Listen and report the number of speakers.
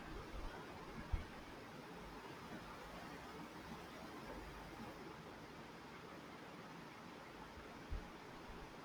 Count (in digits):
0